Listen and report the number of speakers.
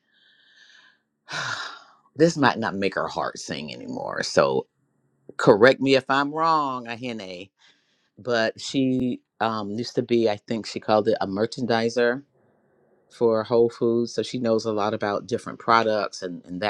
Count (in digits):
1